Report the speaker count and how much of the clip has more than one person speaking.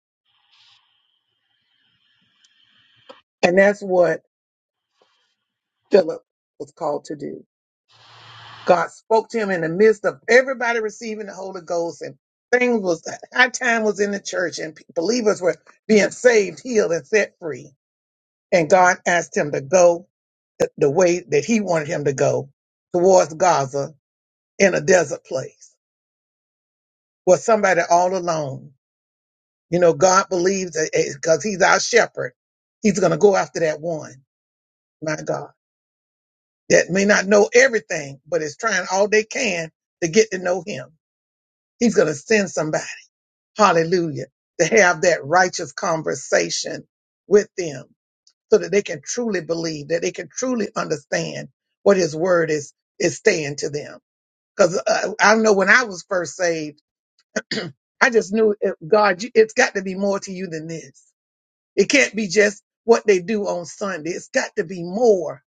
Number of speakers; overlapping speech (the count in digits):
1, no overlap